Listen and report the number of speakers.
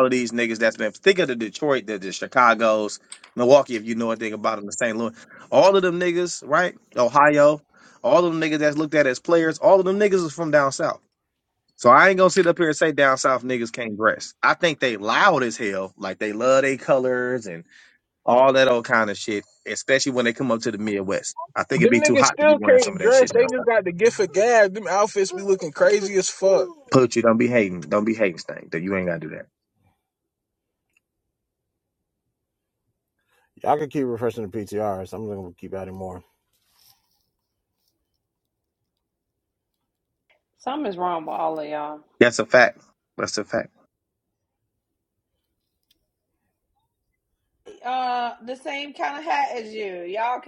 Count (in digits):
4